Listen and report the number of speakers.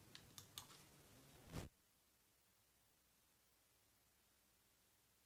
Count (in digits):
0